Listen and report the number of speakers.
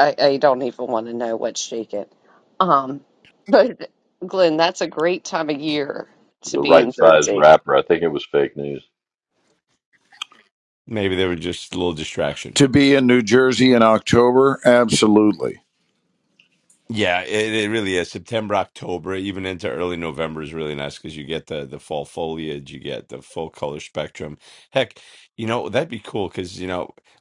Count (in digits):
4